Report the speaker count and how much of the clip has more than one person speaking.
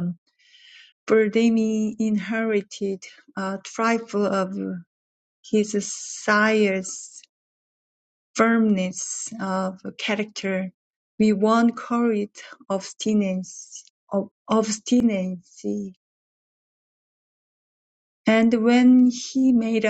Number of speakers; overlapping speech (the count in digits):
1, no overlap